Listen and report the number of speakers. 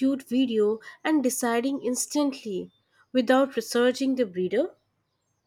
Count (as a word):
one